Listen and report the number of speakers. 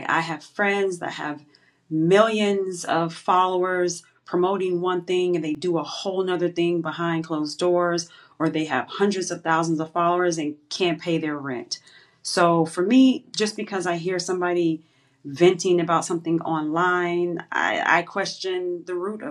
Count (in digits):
1